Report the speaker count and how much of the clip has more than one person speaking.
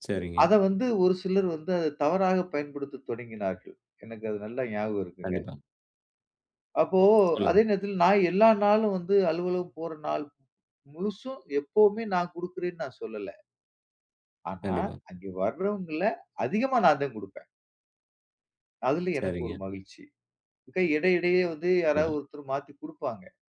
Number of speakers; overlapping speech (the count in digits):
2, about 6%